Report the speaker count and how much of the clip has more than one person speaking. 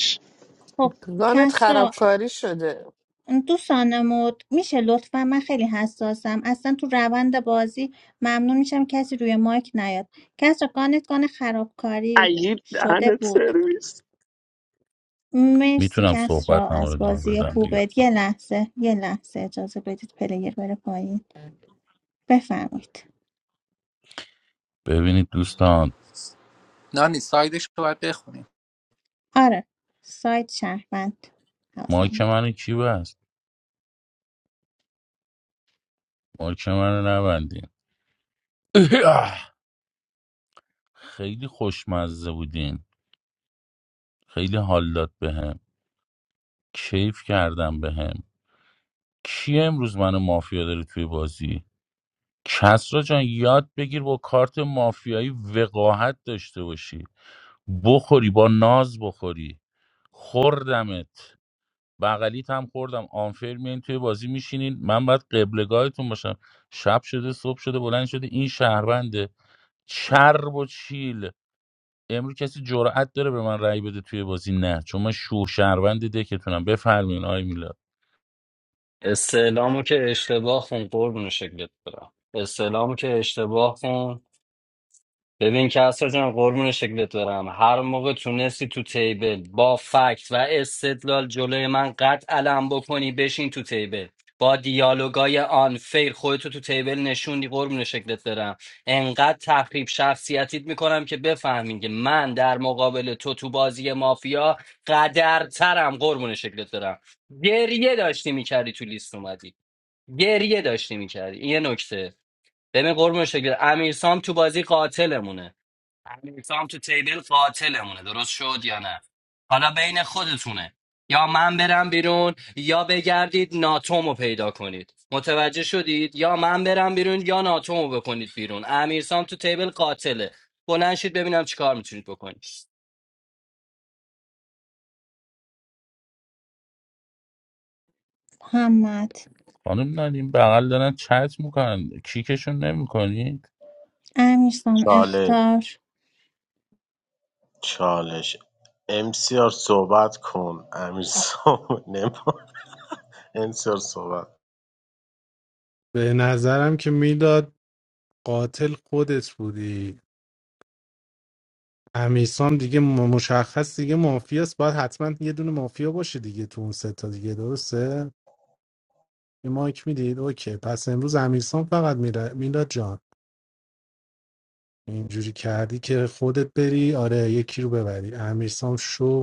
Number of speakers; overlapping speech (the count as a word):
eight, about 2%